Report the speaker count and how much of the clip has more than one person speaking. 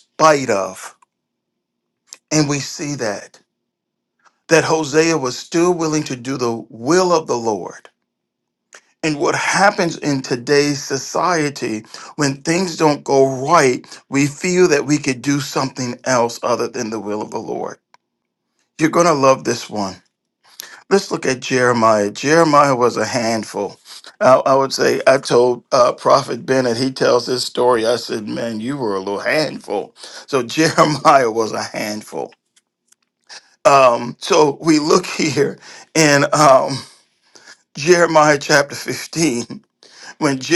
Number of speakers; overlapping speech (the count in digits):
1, no overlap